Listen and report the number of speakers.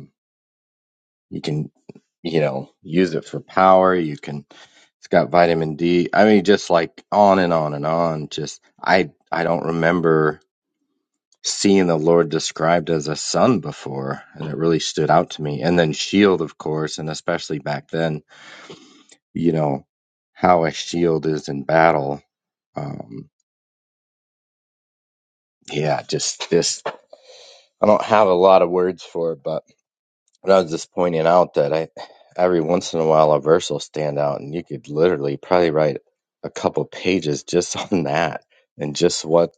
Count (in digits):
1